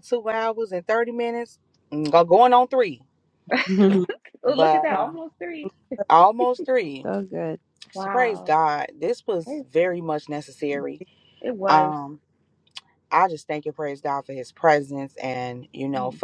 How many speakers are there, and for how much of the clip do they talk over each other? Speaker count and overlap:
three, about 12%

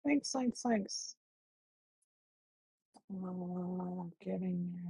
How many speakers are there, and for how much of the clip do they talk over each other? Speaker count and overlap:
one, no overlap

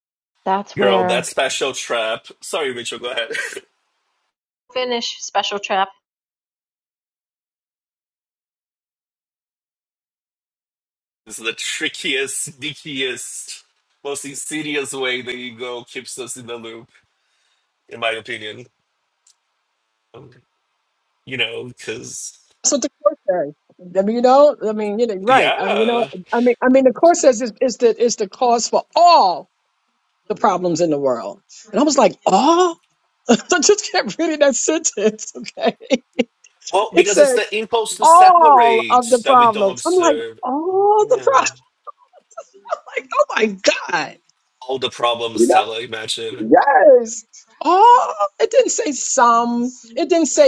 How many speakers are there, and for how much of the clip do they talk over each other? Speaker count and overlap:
three, about 10%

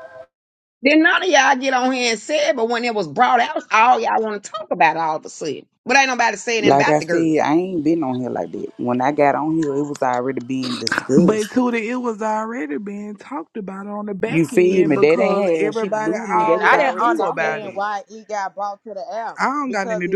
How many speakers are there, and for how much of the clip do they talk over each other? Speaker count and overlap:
four, about 26%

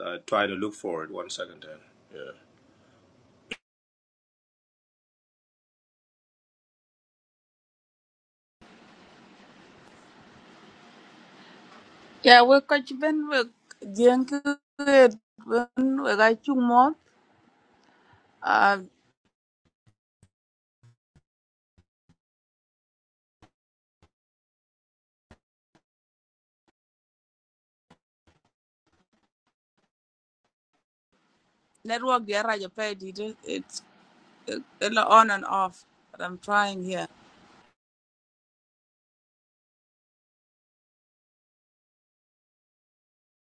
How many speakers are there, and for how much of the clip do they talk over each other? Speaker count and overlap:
two, no overlap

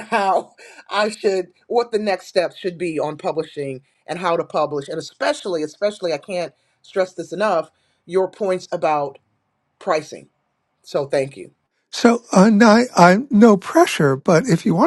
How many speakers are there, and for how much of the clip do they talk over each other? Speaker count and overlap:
two, no overlap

